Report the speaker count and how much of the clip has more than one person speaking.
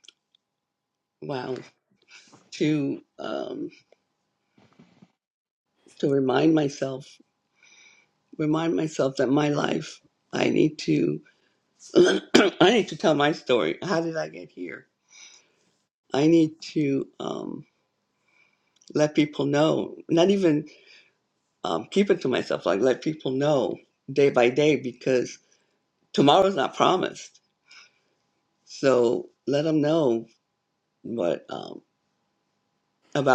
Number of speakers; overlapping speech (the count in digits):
1, no overlap